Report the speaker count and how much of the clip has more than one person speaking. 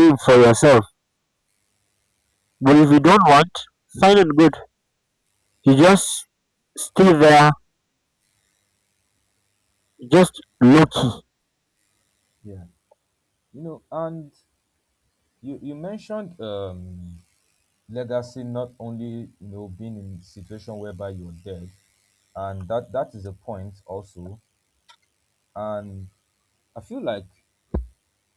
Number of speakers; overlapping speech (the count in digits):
2, no overlap